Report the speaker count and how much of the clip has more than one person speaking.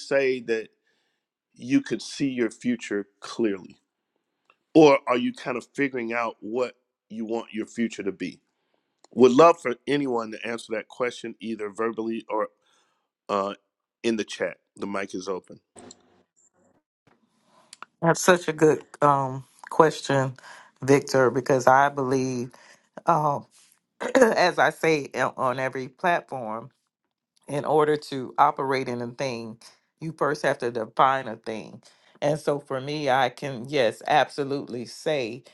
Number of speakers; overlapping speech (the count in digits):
2, no overlap